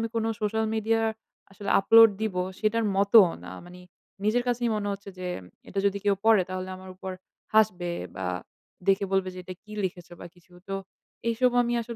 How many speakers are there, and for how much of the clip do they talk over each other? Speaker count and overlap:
one, no overlap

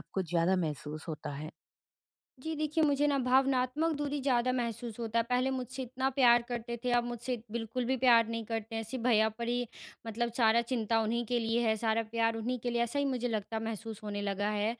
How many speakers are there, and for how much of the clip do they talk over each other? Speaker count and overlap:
two, no overlap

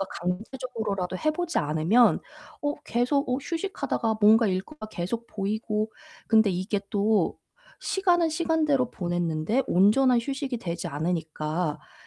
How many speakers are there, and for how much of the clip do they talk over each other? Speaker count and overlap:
one, no overlap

